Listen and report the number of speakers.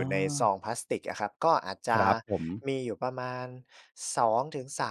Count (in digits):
2